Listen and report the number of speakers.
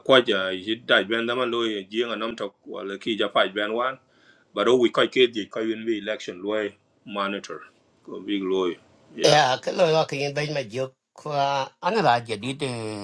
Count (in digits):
2